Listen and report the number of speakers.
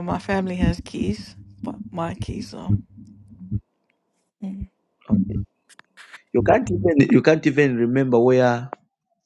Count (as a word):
two